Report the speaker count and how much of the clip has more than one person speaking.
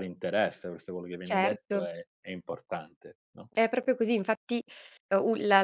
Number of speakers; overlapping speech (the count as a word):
two, about 11%